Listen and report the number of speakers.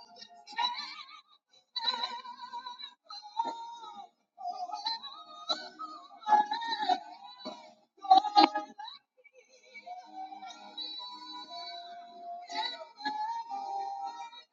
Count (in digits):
0